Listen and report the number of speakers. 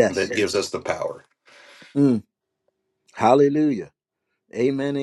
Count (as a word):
two